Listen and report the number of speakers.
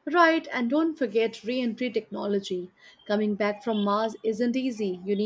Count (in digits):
1